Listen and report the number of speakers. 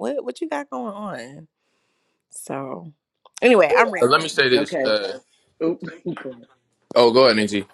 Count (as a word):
three